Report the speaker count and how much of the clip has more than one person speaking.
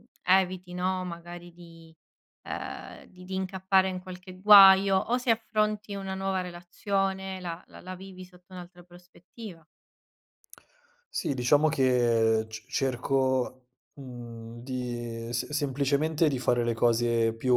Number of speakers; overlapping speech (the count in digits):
2, no overlap